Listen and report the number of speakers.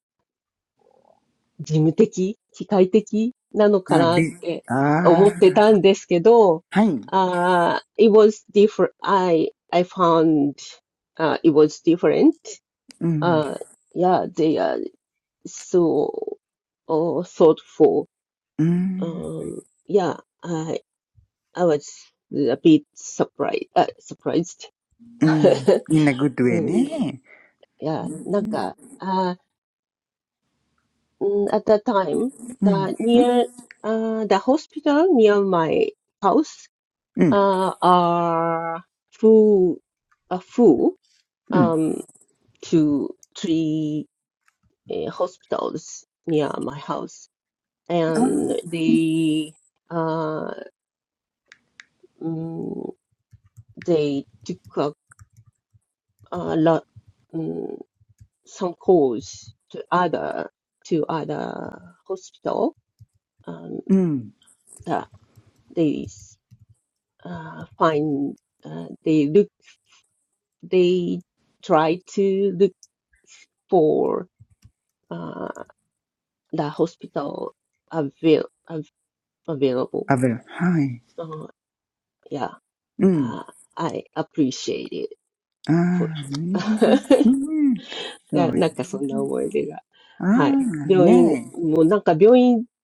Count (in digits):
2